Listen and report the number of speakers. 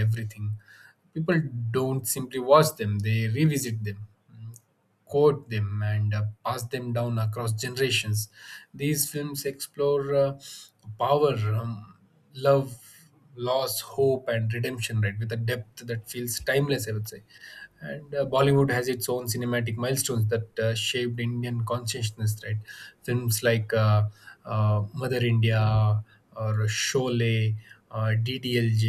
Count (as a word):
one